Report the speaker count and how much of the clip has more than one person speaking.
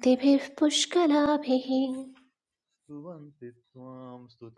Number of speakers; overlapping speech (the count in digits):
2, no overlap